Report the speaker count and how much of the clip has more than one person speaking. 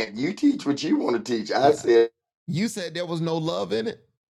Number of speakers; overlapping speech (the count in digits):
2, about 6%